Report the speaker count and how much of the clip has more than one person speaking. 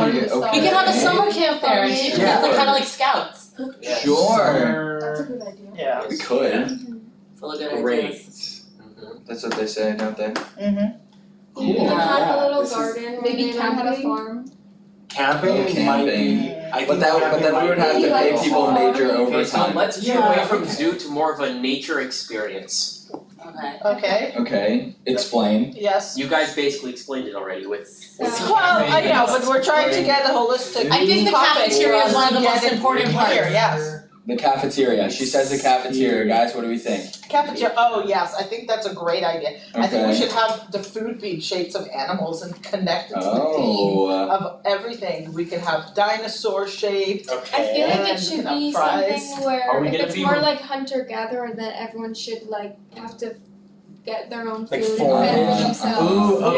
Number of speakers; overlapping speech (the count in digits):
7, about 46%